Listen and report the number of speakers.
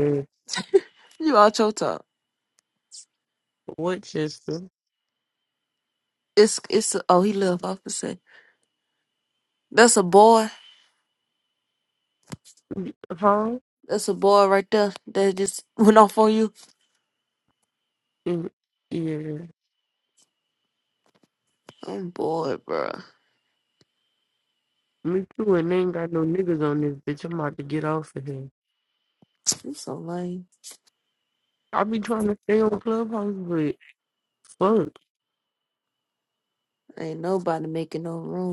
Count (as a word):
two